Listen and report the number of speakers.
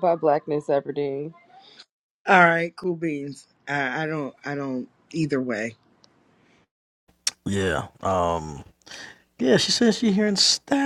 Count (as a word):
three